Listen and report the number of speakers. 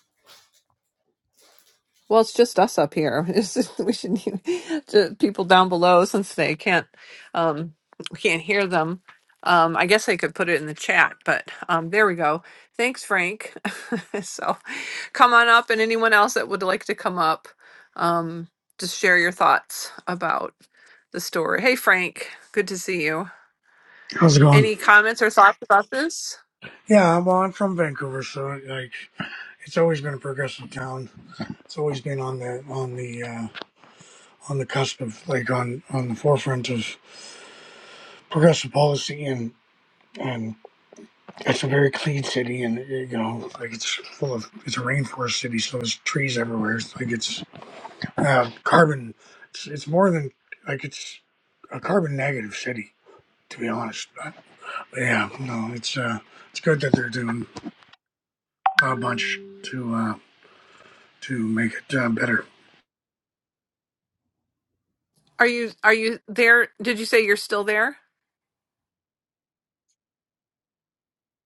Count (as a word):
two